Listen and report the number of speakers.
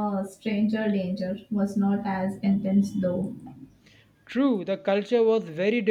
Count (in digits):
2